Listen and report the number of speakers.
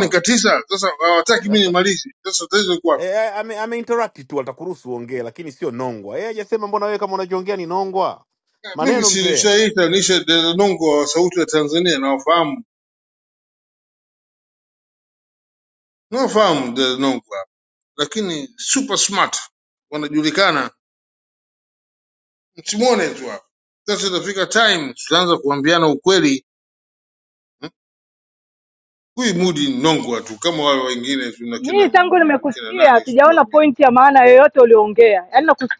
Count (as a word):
three